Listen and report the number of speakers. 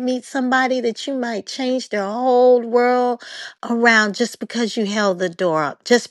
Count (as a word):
one